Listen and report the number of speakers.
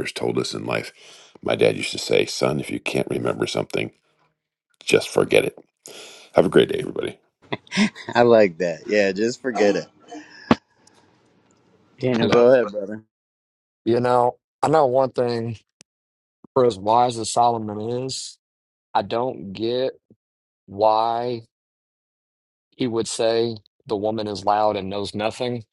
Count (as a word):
three